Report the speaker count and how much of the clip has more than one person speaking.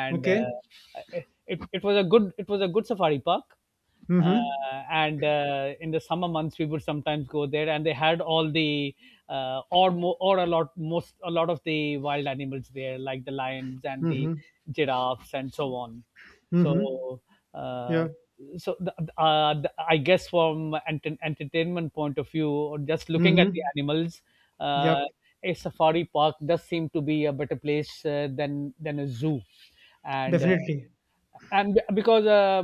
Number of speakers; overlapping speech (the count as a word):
two, about 7%